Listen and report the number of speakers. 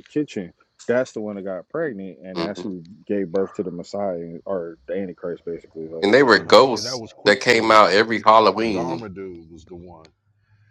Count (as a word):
three